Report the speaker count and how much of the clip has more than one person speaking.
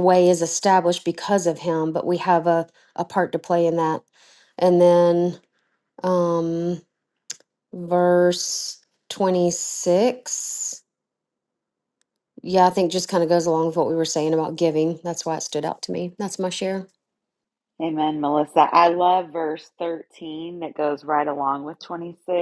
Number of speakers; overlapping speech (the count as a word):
two, no overlap